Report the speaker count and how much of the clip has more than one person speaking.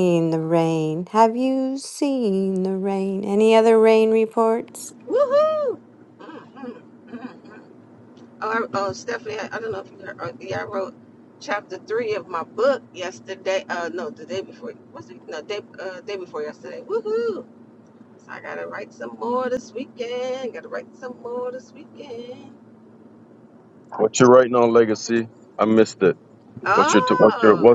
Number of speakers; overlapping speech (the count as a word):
three, about 3%